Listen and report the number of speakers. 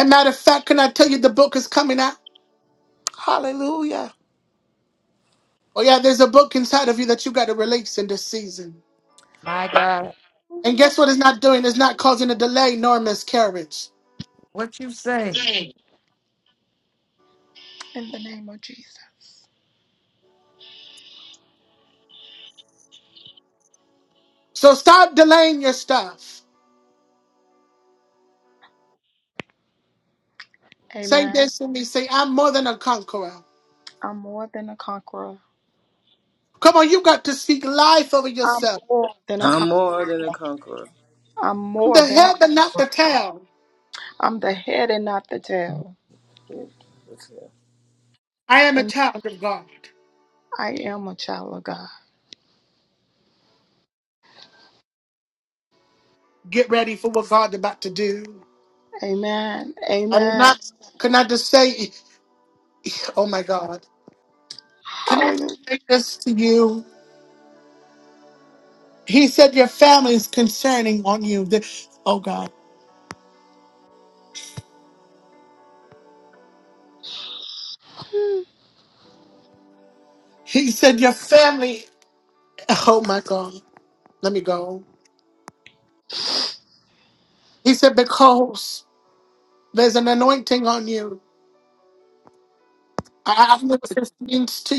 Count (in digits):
4